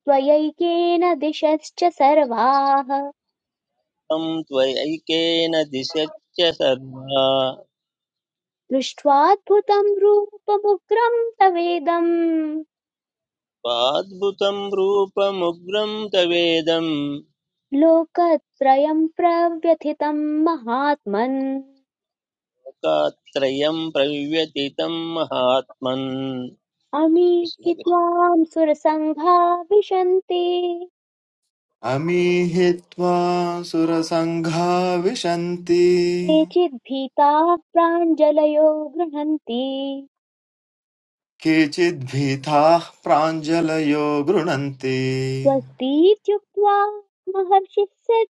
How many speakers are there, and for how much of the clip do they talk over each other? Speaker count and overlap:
3, about 1%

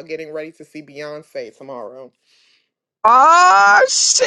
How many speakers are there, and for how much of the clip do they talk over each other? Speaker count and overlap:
2, no overlap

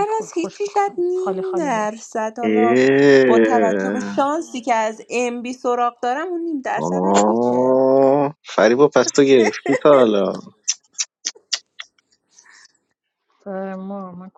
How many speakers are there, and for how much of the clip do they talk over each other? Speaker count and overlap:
3, about 23%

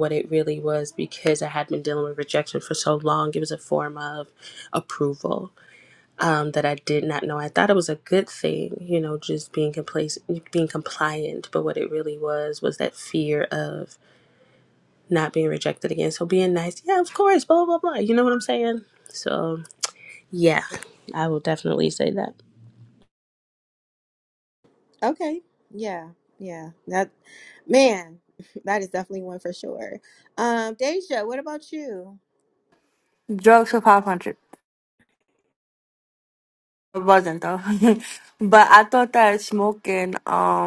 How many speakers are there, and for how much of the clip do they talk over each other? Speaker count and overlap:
3, no overlap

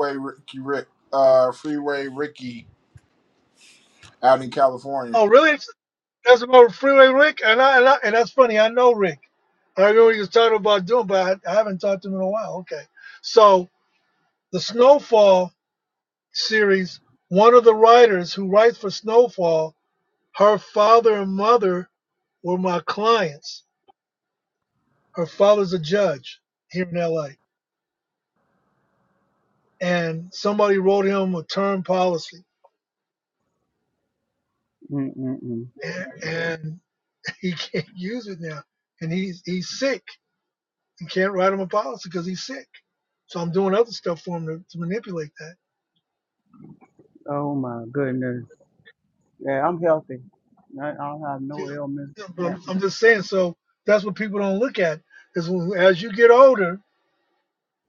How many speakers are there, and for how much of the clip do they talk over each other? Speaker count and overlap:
3, about 1%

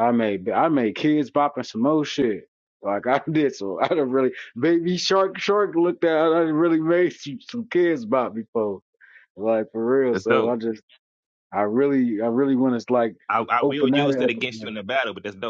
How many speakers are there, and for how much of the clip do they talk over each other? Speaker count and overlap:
2, about 10%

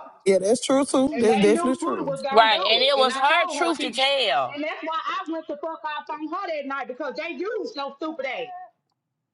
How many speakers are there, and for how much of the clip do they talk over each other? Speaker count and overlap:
3, about 29%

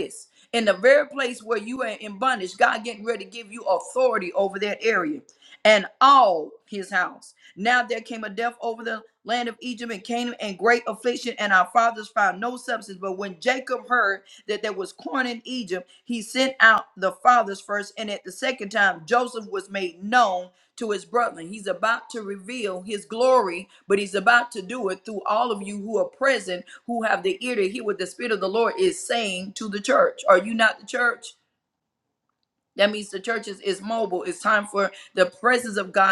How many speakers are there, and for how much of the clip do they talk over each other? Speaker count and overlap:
1, no overlap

